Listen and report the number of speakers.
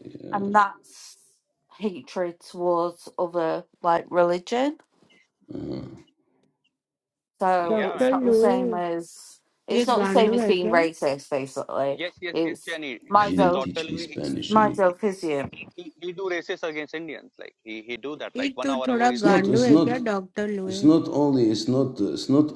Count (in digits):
4